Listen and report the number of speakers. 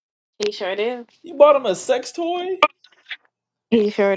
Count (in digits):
2